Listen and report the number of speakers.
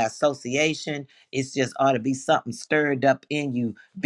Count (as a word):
one